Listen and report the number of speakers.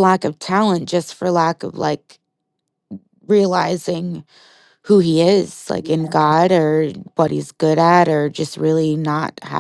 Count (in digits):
1